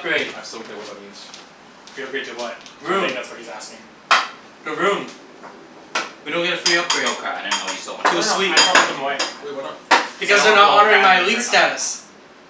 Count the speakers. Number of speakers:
four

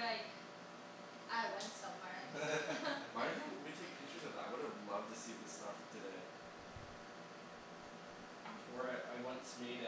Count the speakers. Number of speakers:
three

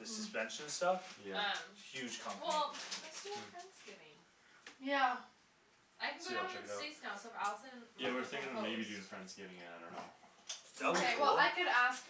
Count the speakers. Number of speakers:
four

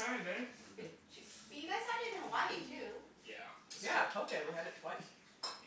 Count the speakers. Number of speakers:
three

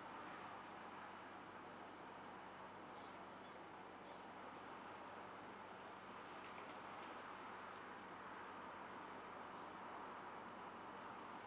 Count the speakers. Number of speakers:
zero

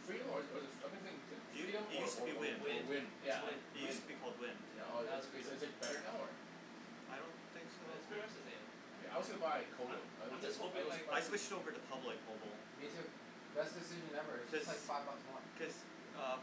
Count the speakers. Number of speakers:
four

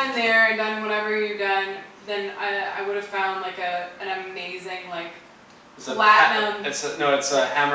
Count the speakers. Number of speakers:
two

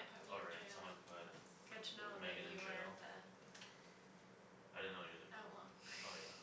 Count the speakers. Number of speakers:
two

